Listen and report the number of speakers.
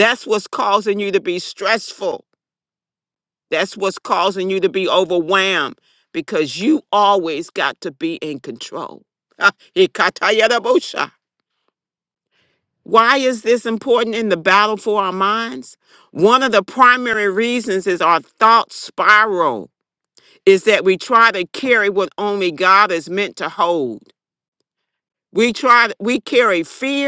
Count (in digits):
1